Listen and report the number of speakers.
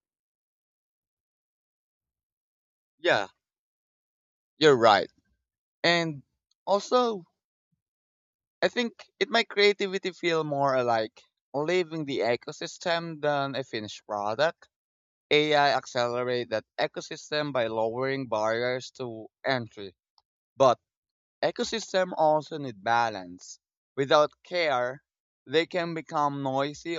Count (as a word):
one